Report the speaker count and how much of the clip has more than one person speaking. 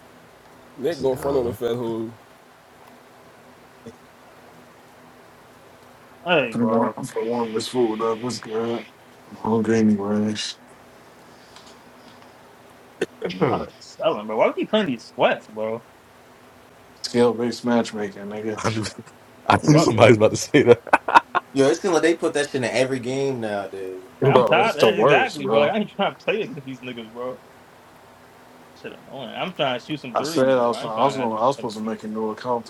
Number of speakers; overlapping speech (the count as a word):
five, about 15%